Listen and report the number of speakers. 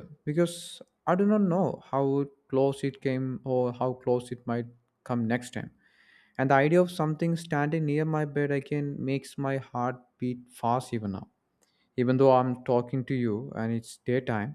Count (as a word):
one